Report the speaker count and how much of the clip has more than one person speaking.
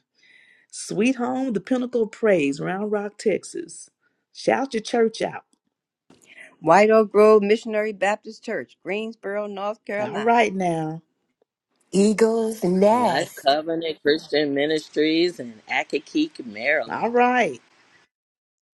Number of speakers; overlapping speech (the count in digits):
4, about 5%